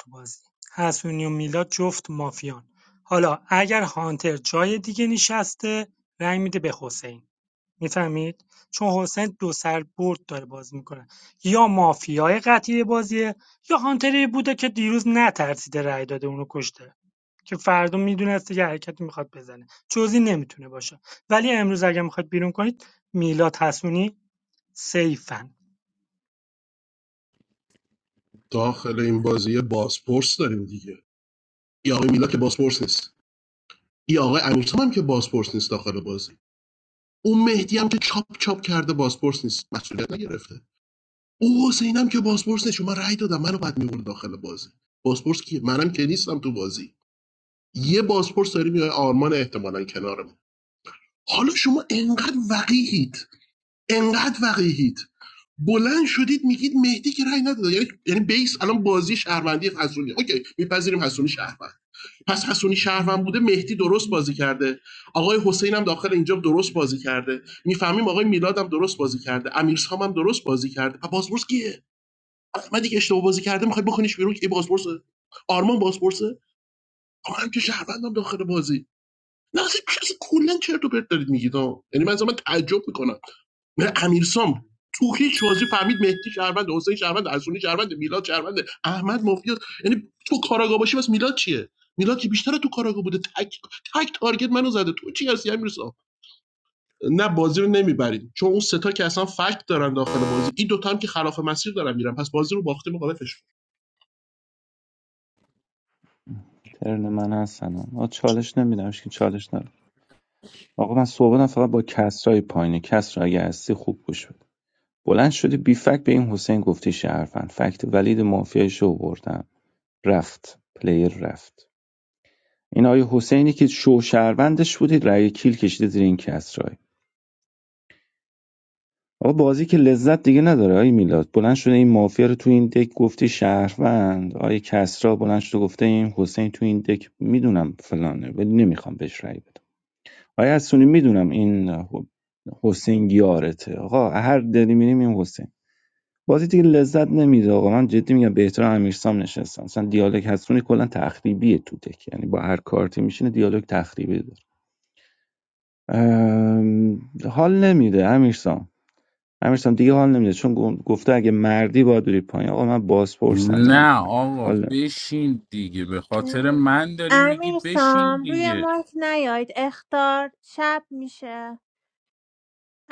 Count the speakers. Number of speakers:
5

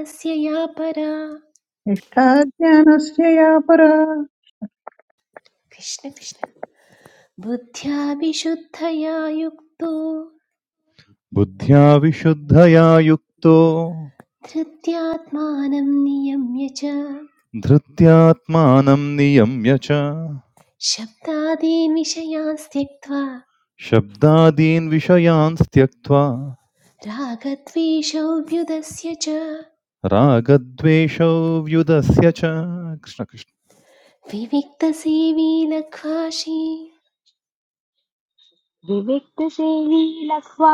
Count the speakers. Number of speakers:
4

